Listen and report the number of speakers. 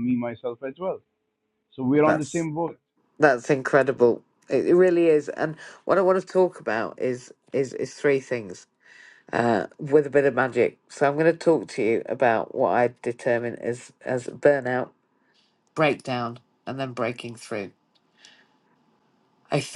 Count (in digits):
2